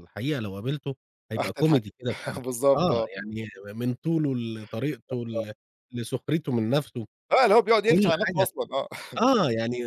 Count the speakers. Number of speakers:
2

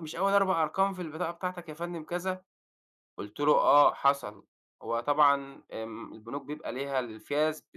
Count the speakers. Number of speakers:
1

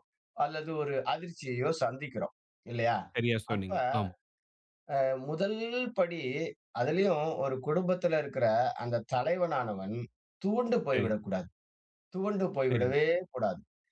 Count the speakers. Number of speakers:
2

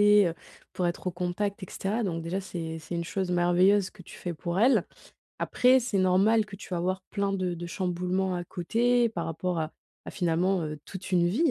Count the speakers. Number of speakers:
1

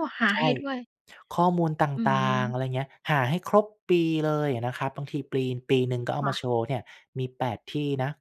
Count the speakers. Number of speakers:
2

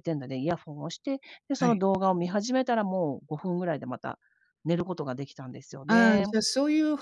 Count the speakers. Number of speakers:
2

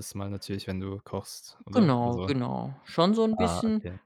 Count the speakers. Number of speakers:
2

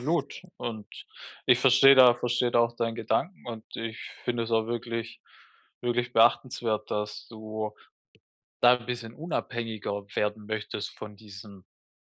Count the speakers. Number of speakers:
1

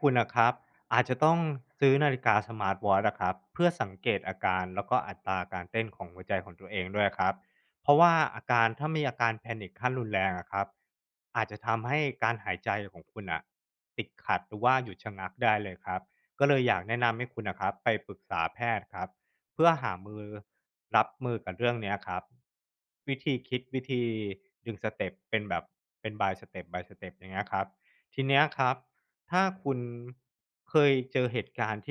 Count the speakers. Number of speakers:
1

